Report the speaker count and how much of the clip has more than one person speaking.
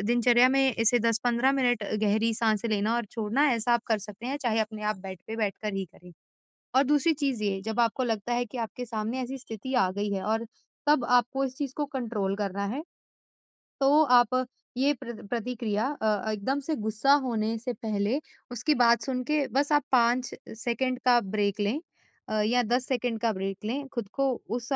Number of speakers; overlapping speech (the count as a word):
one, no overlap